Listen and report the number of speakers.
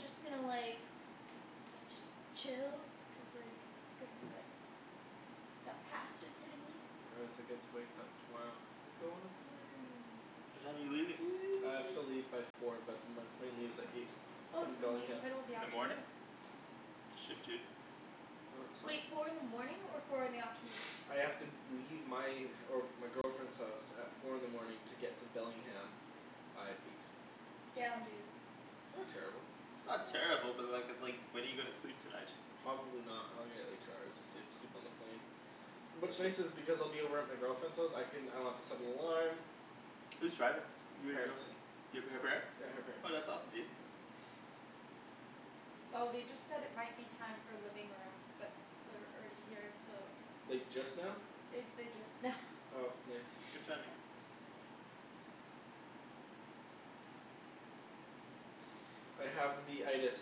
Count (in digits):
3